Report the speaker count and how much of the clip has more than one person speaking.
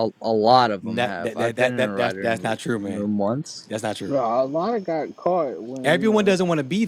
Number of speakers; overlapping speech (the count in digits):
3, about 40%